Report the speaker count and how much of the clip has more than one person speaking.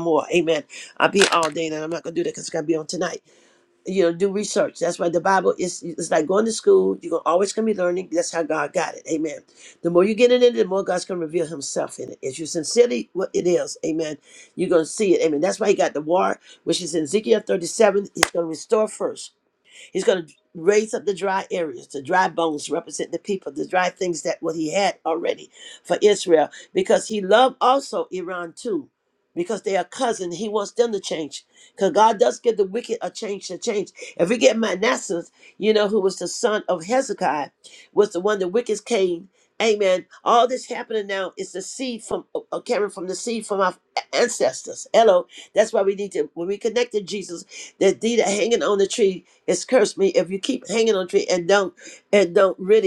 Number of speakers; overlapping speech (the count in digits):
1, no overlap